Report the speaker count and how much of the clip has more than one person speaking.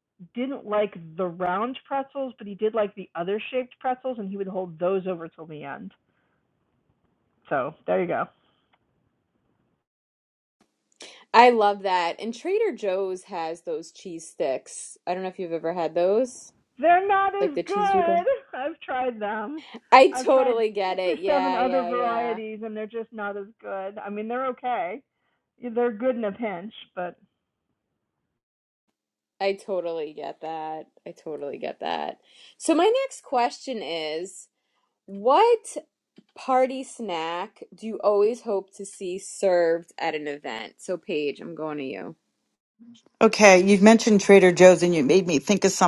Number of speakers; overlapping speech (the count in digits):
3, about 7%